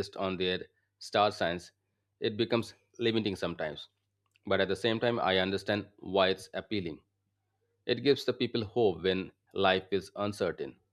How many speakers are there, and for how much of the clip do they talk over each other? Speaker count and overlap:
1, no overlap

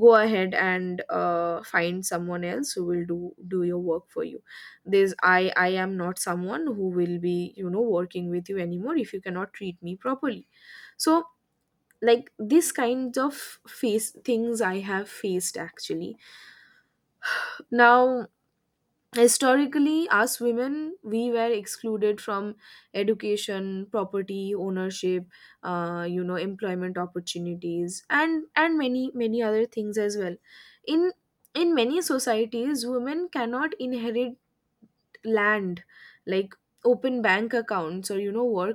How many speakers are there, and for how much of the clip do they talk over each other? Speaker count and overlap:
1, no overlap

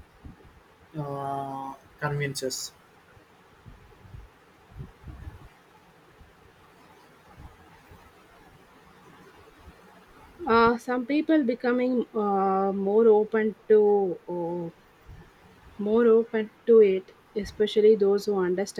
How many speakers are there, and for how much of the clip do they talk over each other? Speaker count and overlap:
2, no overlap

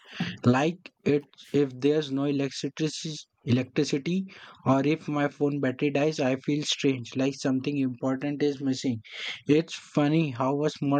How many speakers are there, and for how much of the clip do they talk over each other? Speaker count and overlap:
1, no overlap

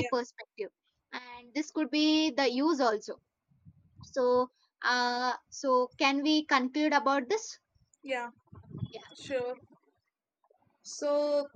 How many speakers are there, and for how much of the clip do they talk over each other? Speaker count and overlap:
2, about 1%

